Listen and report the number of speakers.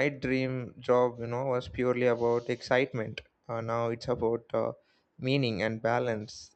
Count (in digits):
1